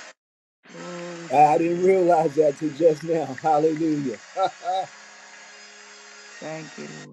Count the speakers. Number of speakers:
2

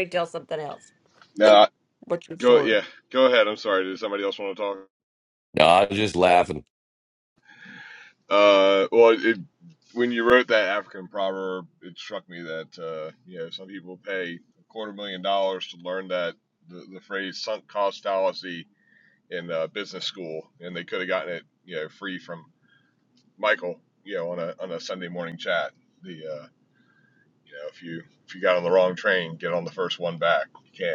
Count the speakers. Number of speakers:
3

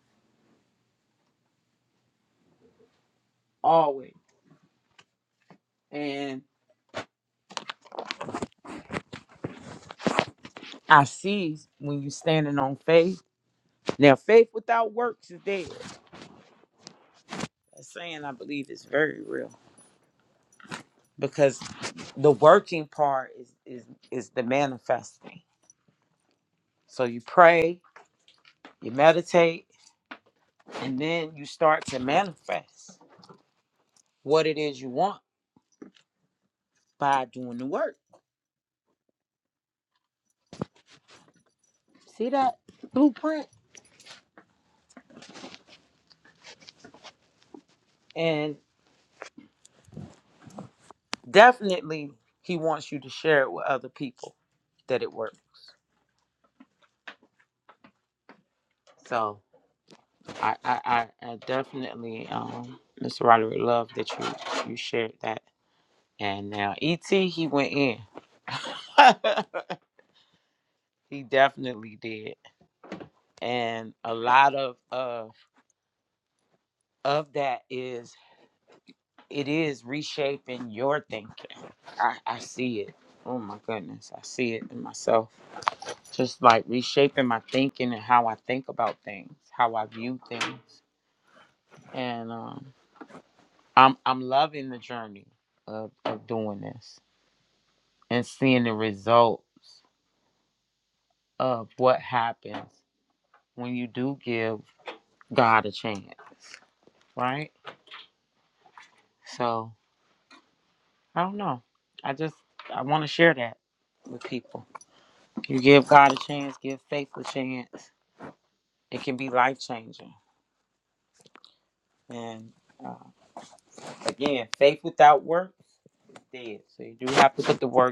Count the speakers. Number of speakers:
1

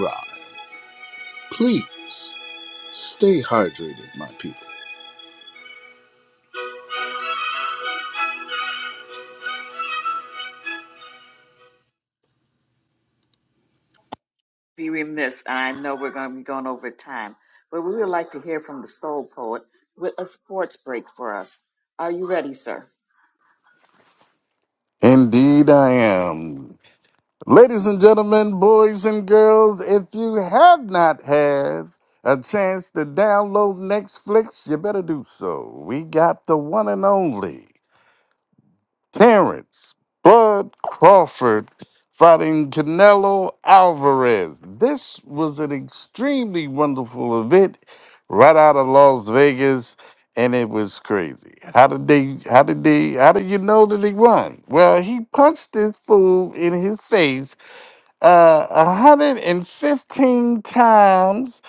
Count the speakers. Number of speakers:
3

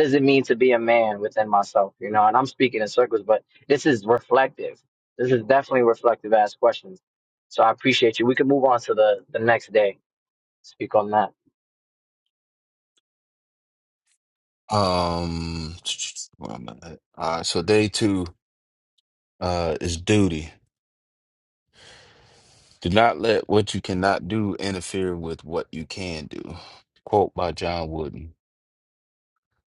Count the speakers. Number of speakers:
2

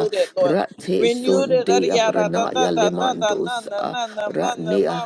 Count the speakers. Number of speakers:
2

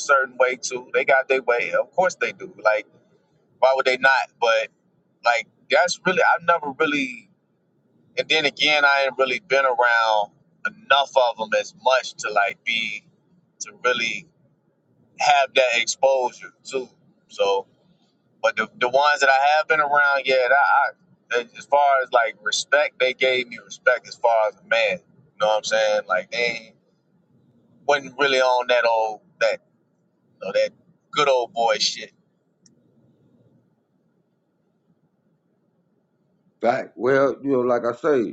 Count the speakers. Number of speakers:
2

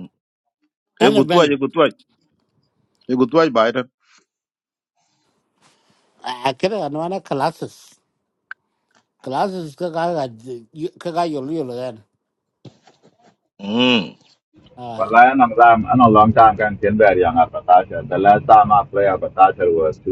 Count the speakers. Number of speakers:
3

